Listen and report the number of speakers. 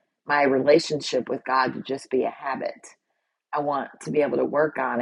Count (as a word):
one